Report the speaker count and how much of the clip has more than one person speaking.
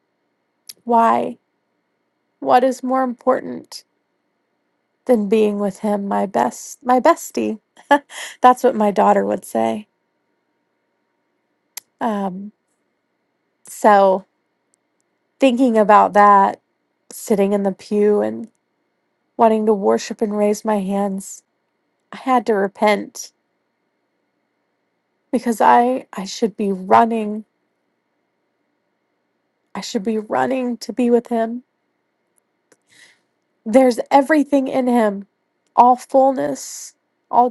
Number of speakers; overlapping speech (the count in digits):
1, no overlap